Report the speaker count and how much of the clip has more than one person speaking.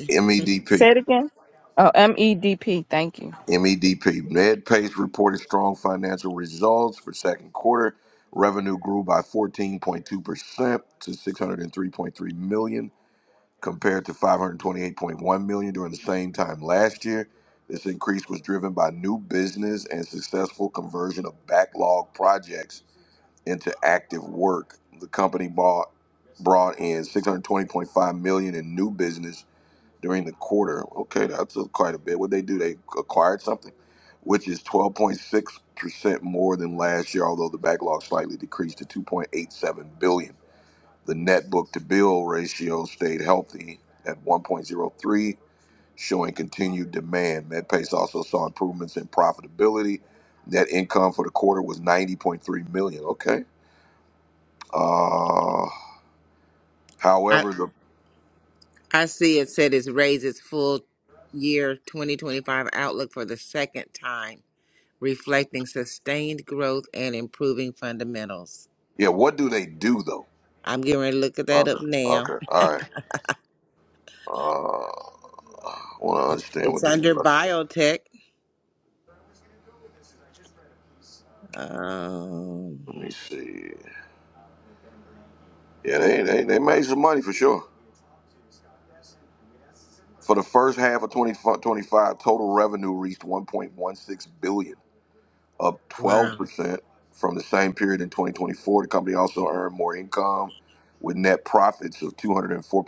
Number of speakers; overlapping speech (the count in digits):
3, about 2%